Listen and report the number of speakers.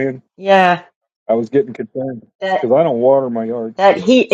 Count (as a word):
two